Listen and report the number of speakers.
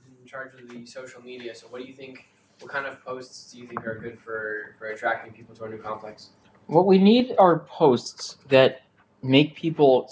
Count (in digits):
2